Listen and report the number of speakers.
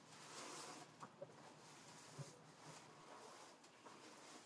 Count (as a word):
zero